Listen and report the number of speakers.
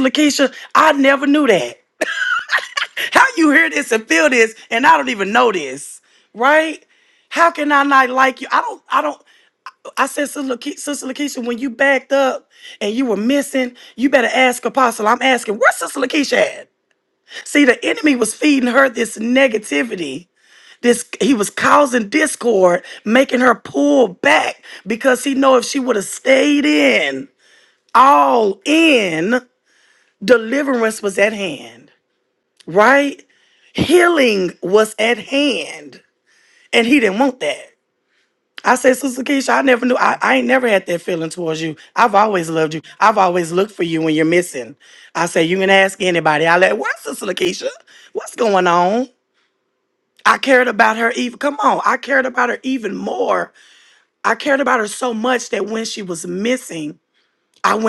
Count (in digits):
1